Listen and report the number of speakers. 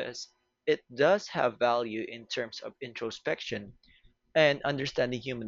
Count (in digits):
1